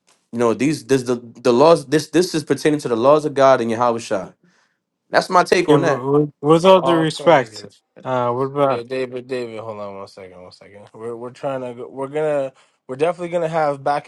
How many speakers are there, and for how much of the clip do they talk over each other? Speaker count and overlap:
three, about 10%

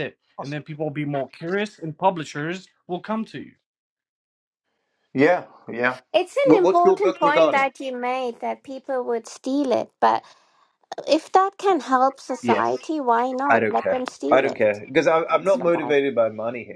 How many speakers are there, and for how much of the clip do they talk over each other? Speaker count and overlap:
three, about 21%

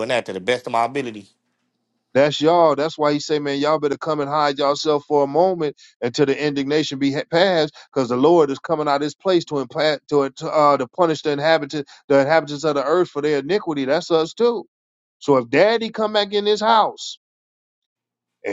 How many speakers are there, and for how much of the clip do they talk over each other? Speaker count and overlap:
two, no overlap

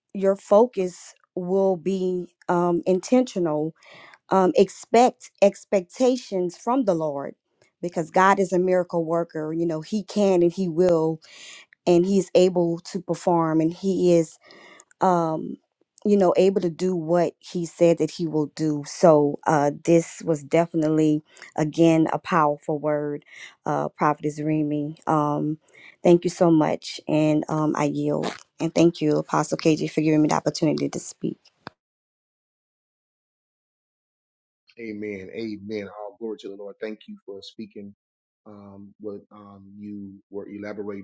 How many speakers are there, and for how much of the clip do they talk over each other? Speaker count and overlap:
two, no overlap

